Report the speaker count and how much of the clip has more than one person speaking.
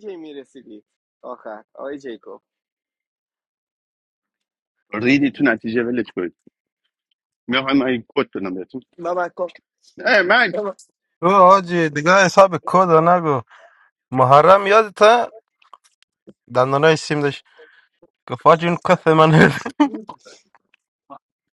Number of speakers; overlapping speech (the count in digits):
3, no overlap